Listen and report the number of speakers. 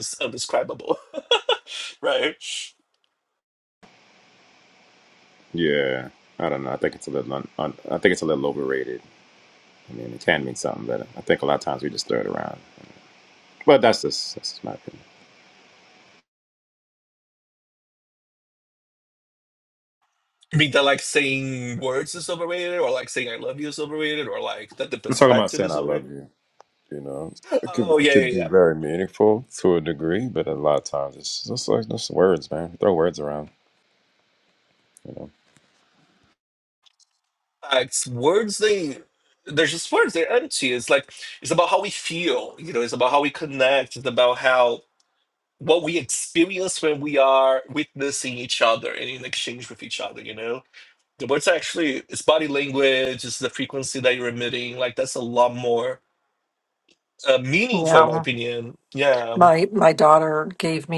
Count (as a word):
three